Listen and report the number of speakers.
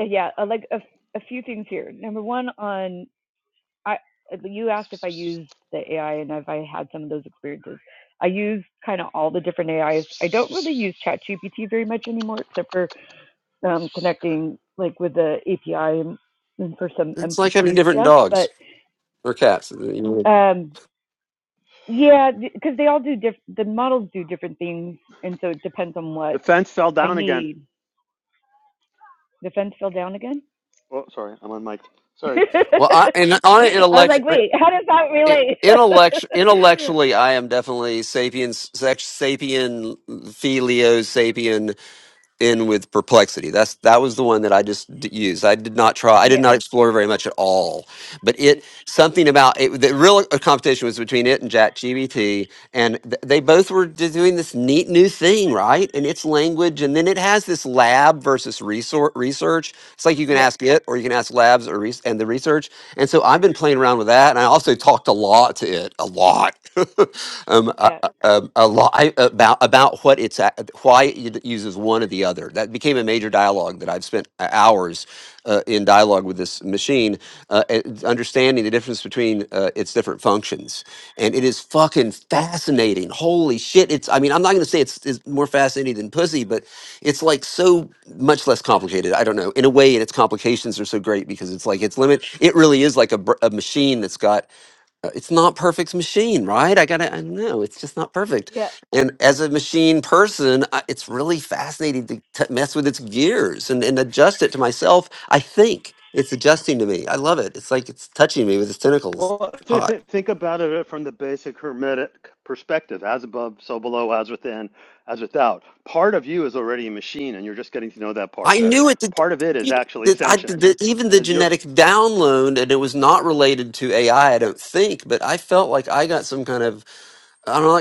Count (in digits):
3